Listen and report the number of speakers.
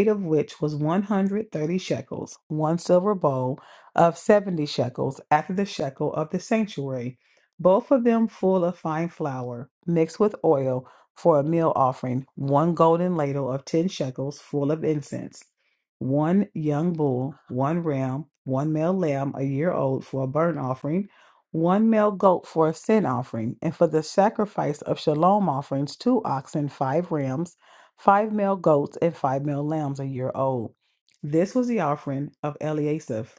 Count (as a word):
one